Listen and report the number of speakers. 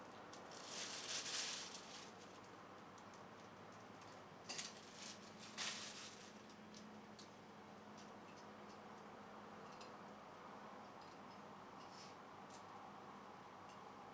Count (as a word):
zero